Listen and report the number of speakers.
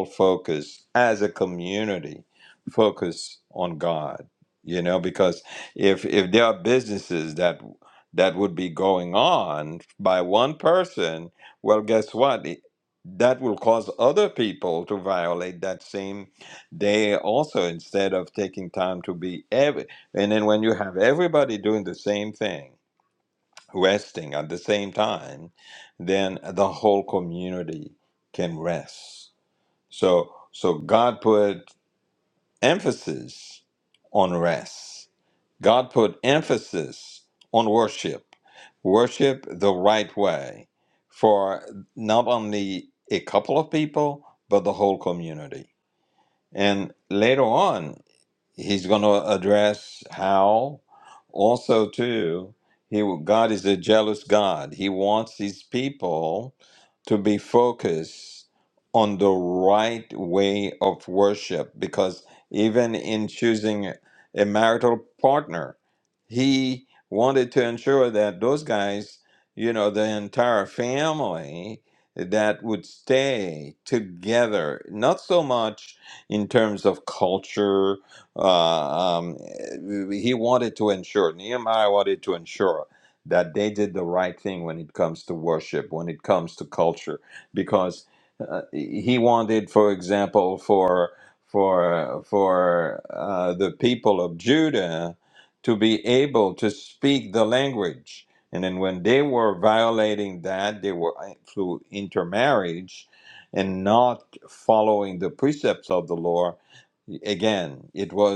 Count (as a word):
one